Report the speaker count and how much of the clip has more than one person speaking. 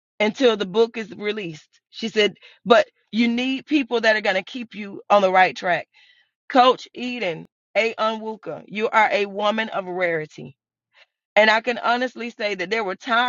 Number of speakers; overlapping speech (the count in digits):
1, no overlap